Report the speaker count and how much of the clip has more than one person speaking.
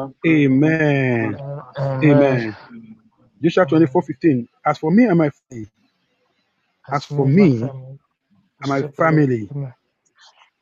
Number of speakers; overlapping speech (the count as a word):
three, about 41%